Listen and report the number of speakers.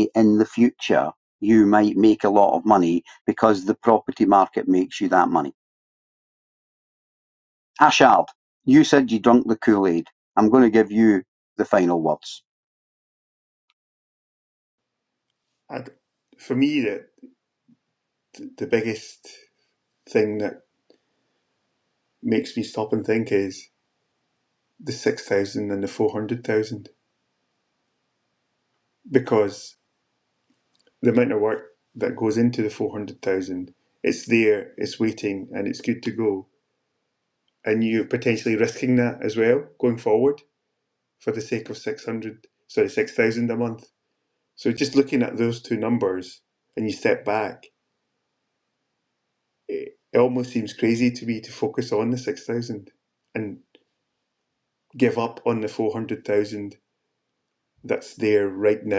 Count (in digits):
2